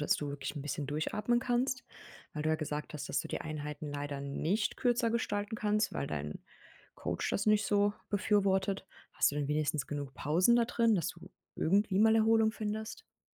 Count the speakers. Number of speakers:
1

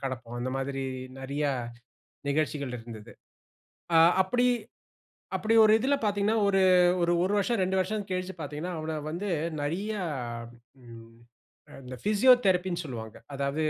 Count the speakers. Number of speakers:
1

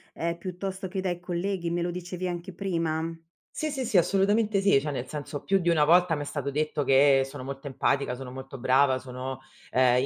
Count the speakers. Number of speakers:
2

